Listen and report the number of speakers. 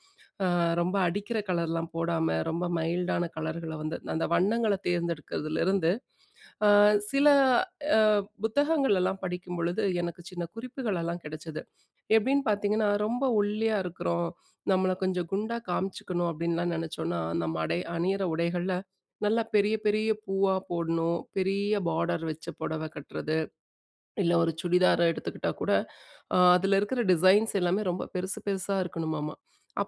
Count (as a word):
one